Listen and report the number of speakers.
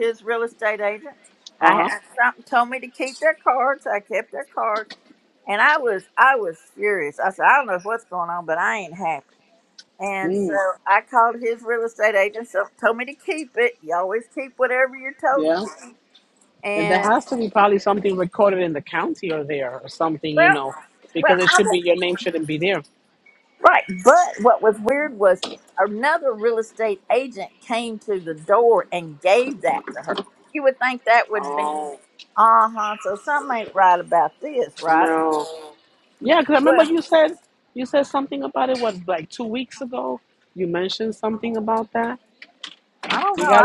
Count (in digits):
2